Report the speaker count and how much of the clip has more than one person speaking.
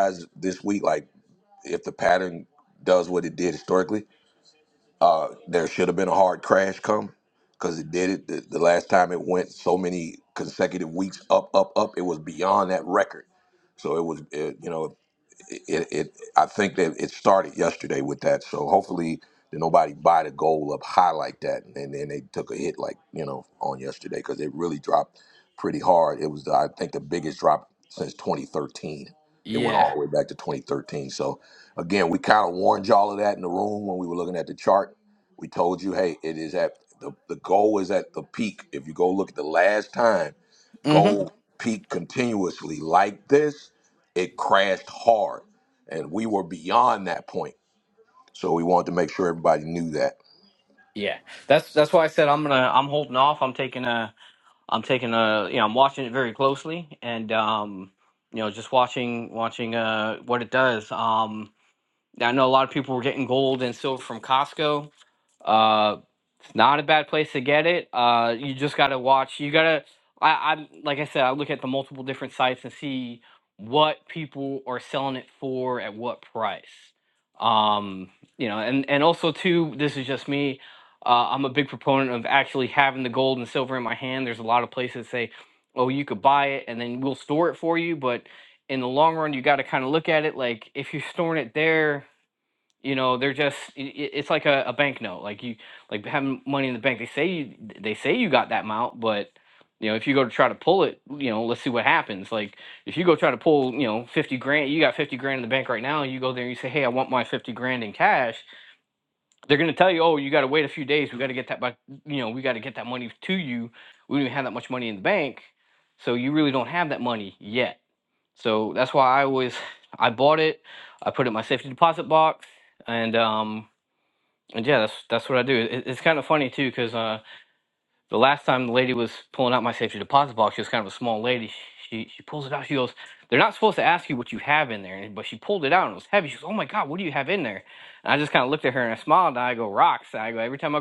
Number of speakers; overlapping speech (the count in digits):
2, under 1%